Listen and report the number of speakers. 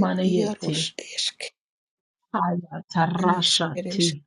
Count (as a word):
two